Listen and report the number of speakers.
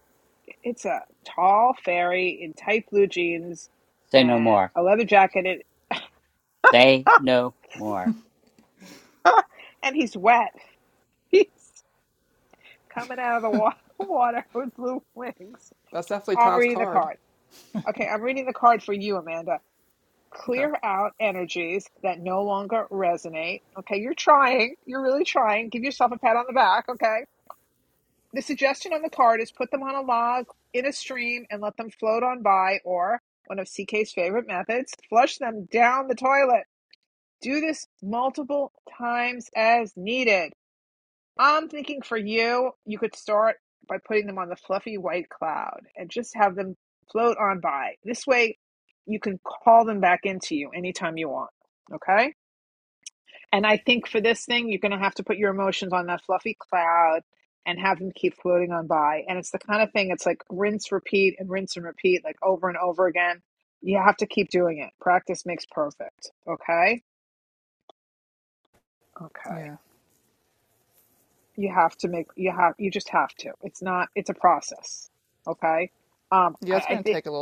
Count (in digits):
3